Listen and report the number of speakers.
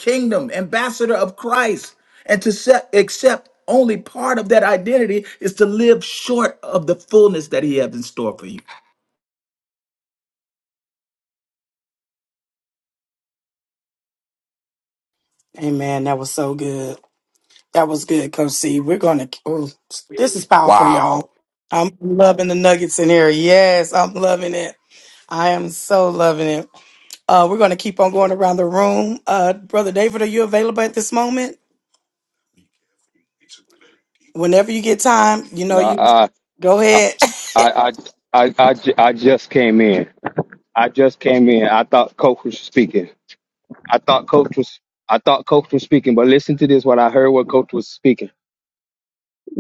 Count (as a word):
three